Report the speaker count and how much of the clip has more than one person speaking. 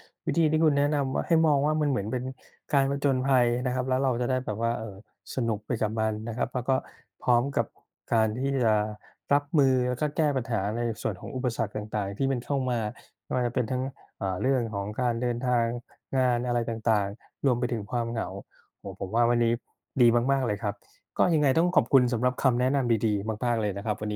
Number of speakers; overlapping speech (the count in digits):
1, no overlap